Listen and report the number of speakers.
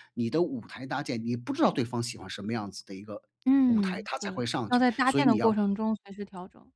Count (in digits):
2